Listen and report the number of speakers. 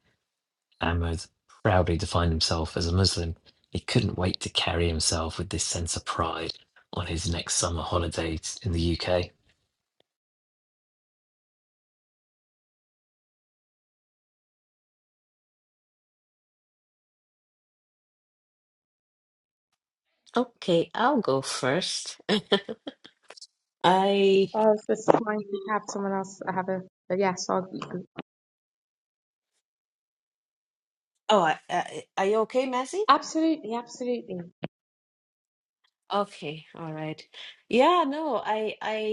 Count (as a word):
three